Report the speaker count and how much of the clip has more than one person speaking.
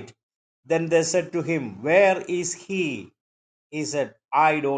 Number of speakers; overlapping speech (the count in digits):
1, no overlap